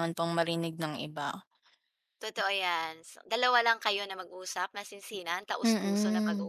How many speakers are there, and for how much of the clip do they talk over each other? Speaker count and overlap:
2, about 13%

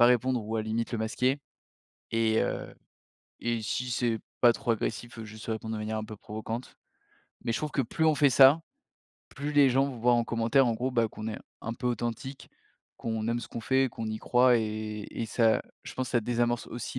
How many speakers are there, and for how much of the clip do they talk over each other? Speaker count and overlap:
1, no overlap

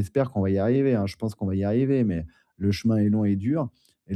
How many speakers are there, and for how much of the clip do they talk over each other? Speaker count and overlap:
1, no overlap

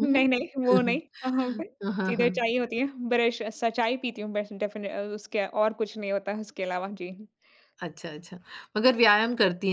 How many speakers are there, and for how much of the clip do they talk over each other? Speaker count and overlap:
2, about 6%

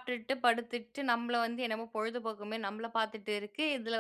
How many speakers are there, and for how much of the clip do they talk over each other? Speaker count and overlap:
1, no overlap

